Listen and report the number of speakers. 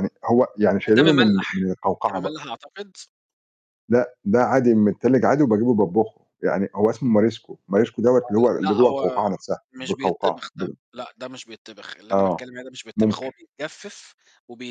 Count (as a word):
two